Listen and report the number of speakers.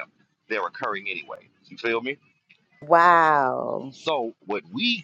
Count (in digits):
2